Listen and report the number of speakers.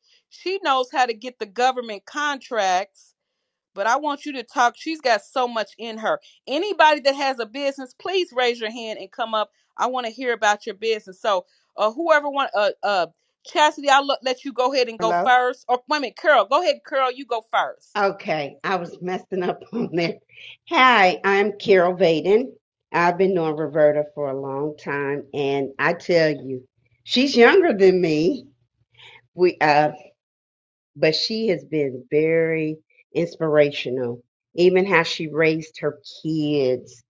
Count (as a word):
two